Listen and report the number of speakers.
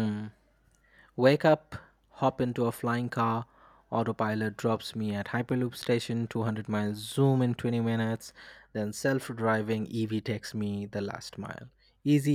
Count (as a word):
one